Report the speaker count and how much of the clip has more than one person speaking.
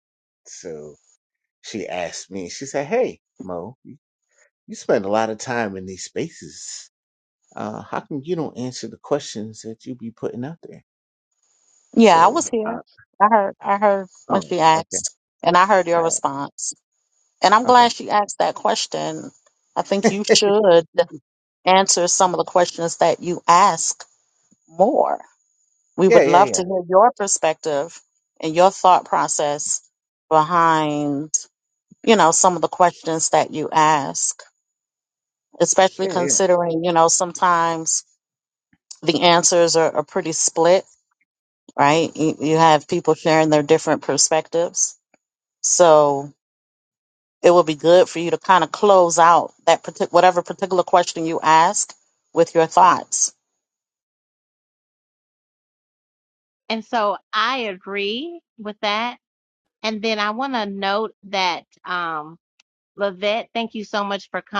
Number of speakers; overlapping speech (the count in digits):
3, about 4%